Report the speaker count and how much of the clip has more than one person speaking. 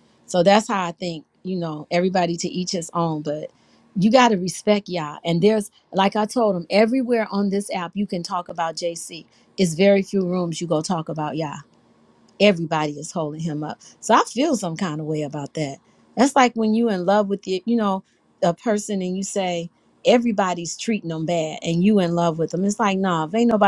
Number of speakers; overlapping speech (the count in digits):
1, no overlap